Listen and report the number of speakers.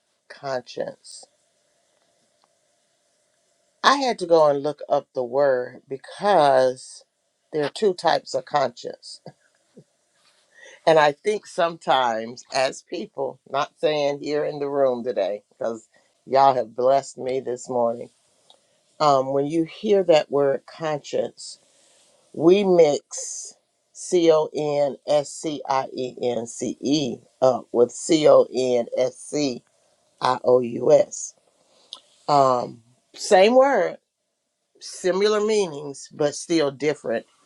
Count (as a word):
one